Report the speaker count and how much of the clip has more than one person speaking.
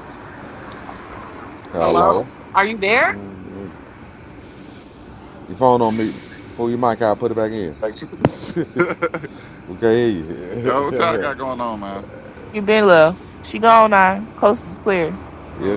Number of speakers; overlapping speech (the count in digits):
4, about 6%